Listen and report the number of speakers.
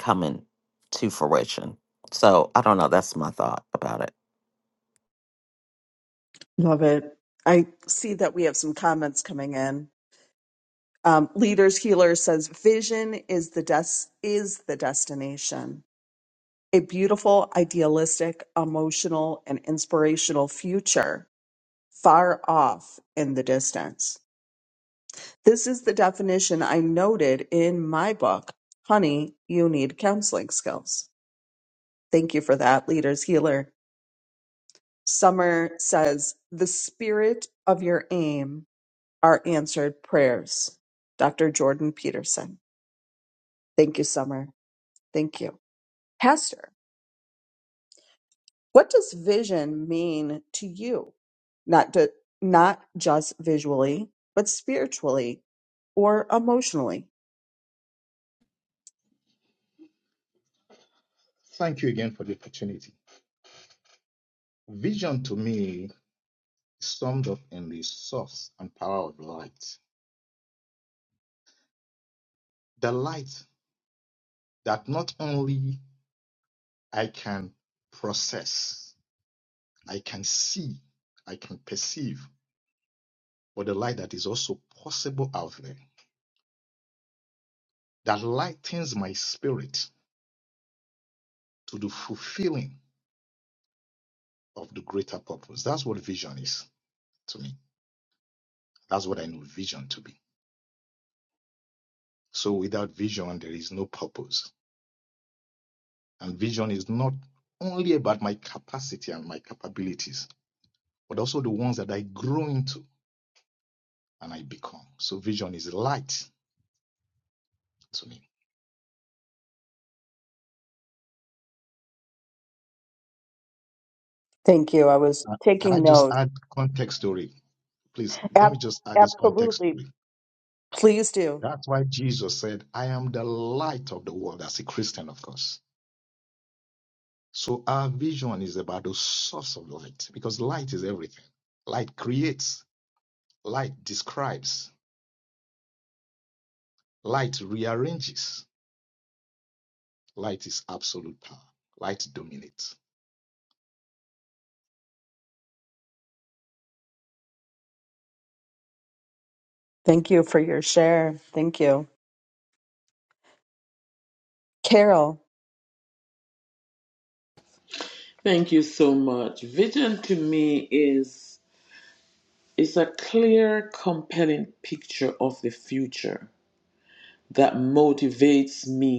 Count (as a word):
four